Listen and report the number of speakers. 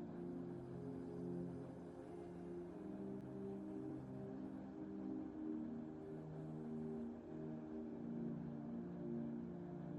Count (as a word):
zero